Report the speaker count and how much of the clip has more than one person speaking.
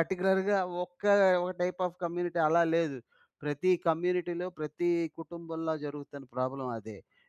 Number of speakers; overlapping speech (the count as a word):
one, no overlap